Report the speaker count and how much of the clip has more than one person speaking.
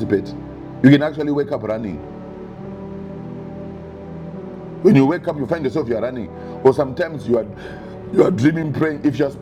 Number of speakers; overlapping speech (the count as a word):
one, no overlap